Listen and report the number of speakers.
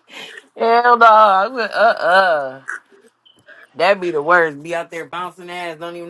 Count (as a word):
one